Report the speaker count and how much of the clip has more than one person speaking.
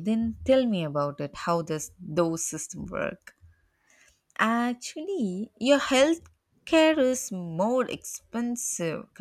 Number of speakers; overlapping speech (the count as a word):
one, no overlap